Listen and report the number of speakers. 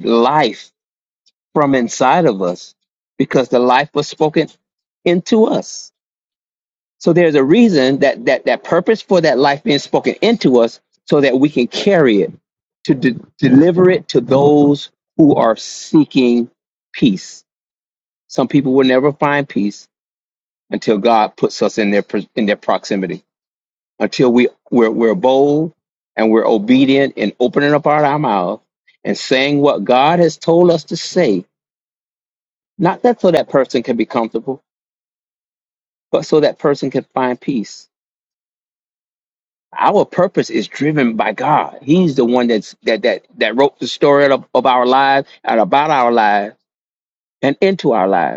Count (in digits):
1